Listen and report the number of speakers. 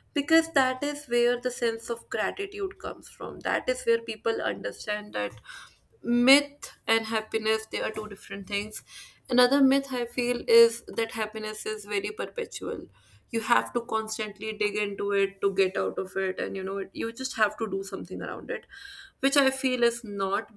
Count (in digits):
1